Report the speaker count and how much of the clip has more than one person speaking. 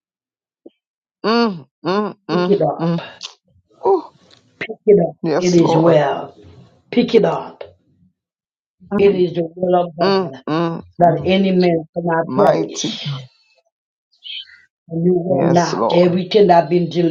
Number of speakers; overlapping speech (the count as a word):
two, about 20%